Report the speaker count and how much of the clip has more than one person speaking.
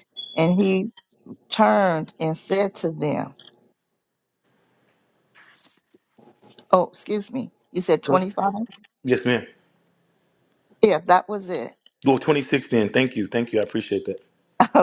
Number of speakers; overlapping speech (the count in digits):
2, about 1%